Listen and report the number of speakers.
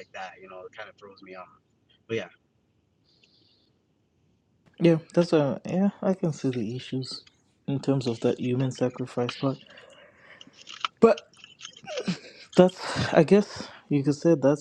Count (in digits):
2